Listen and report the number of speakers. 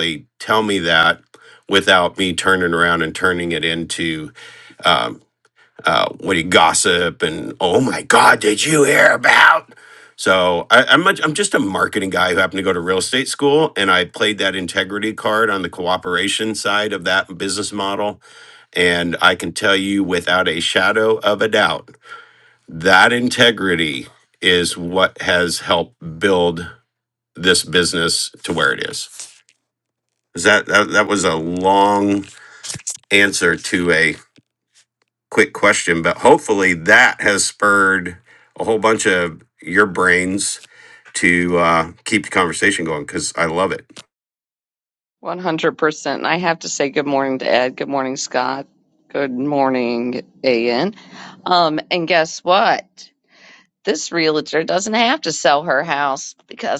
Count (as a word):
two